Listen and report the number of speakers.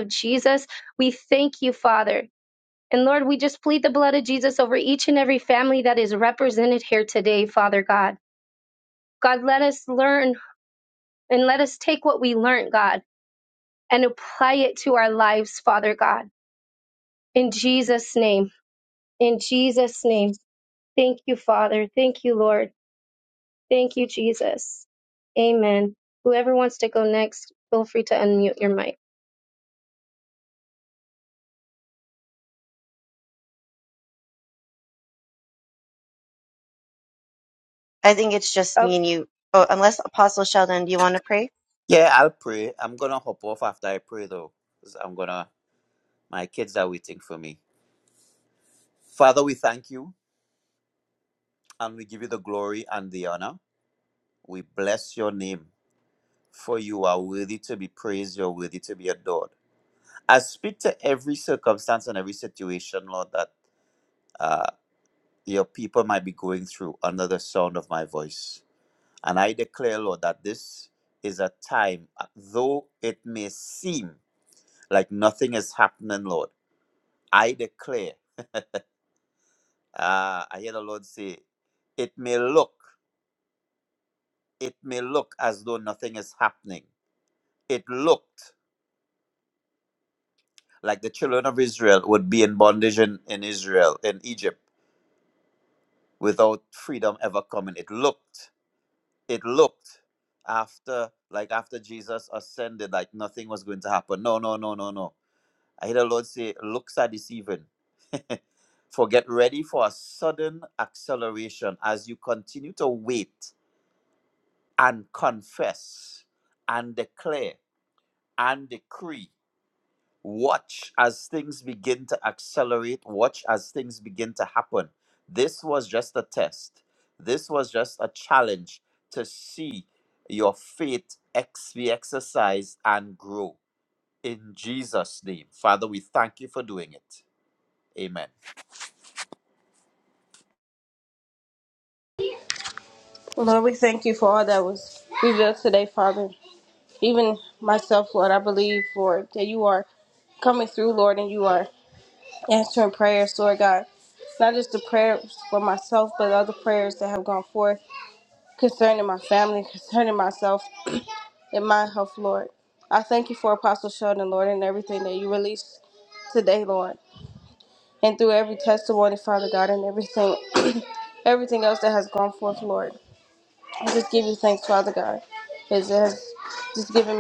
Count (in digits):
4